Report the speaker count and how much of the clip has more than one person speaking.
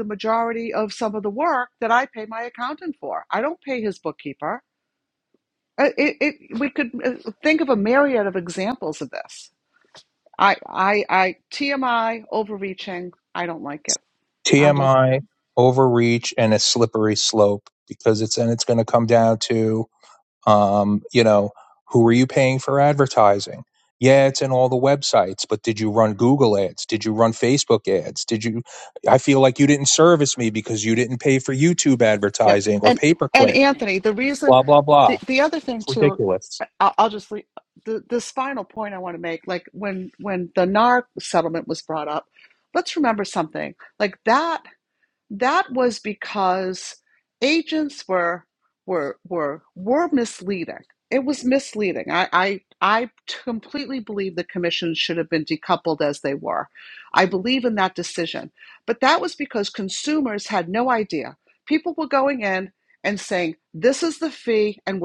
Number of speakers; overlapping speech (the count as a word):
two, about 3%